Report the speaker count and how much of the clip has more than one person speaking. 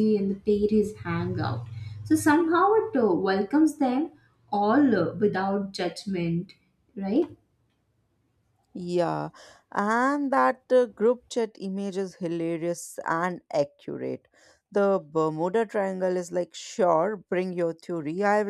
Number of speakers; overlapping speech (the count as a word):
two, no overlap